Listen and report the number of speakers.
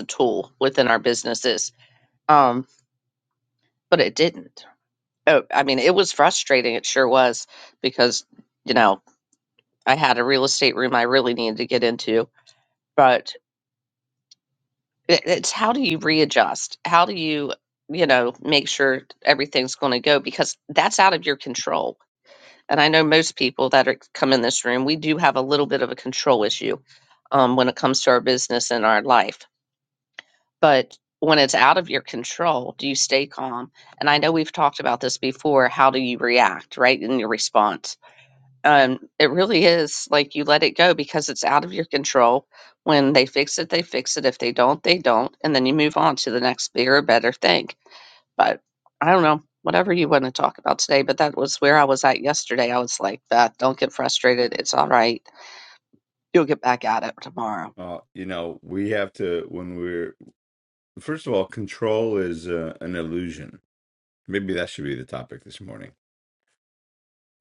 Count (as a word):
two